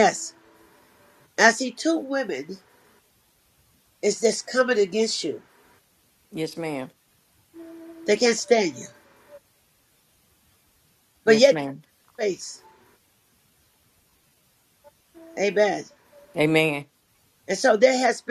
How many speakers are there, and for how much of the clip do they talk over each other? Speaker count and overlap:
two, about 2%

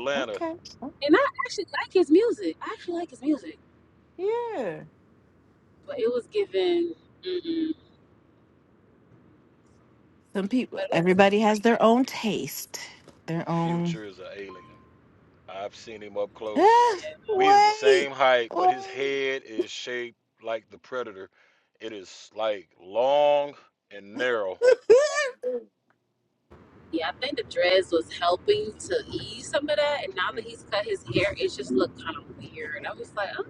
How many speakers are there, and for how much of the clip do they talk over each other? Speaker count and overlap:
three, about 9%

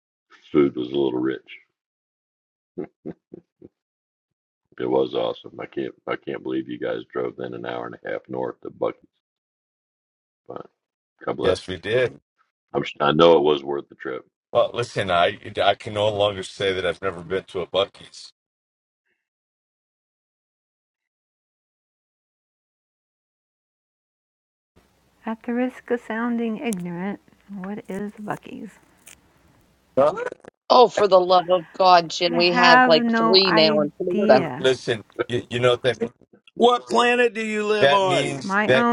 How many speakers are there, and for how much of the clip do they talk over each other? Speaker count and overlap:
five, about 9%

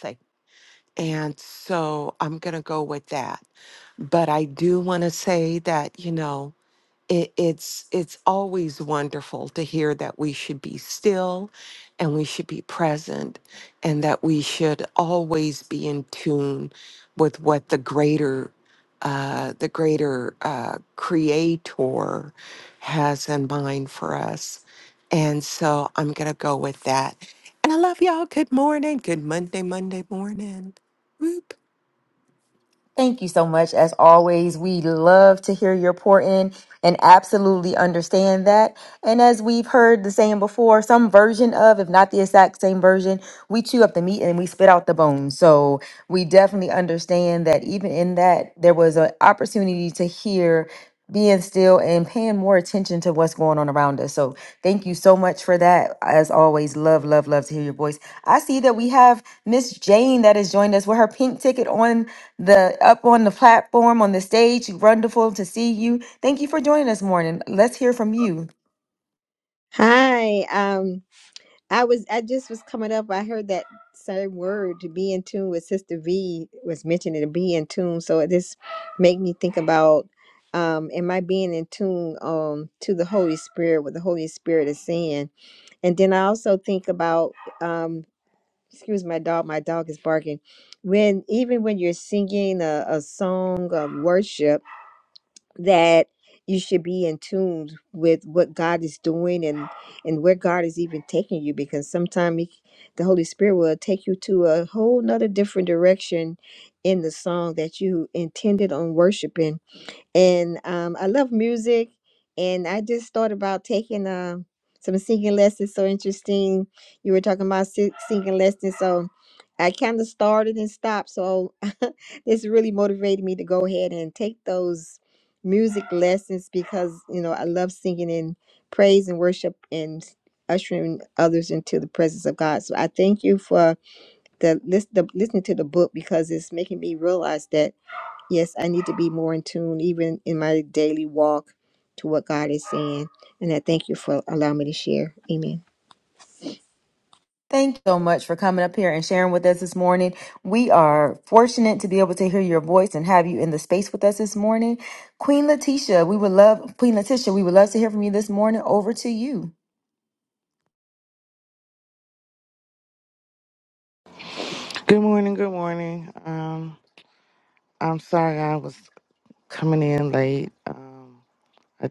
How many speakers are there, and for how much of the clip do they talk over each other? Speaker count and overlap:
four, no overlap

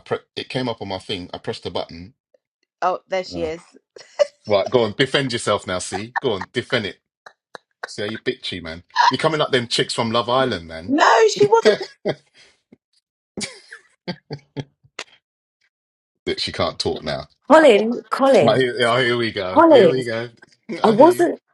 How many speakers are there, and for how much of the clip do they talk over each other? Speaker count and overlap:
three, about 7%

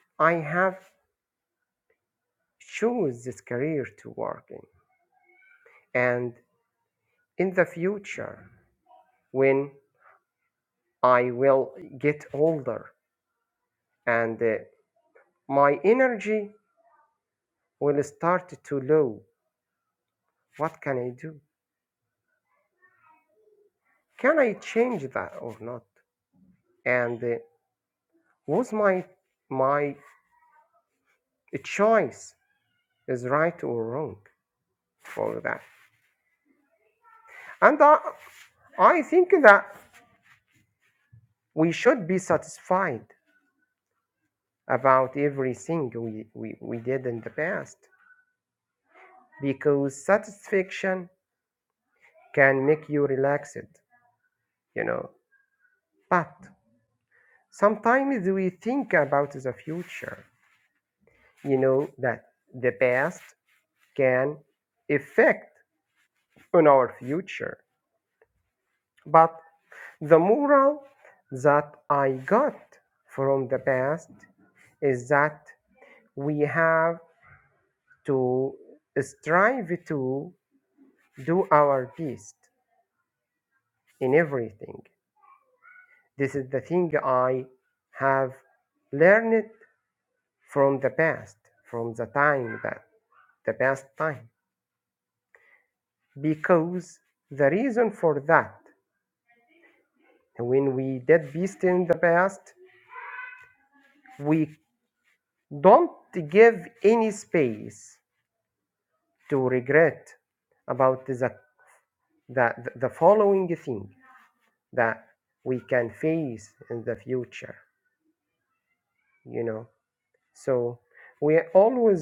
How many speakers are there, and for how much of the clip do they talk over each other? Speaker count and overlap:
one, no overlap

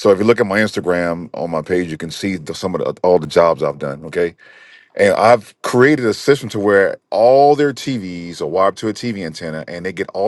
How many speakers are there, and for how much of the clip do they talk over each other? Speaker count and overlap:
one, no overlap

